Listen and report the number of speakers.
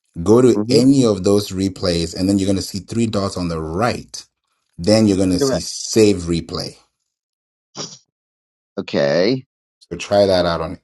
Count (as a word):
two